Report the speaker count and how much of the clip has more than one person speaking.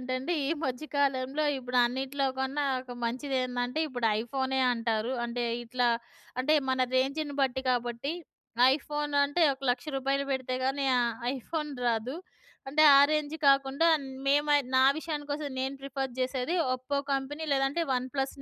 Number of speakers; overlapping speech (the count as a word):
one, no overlap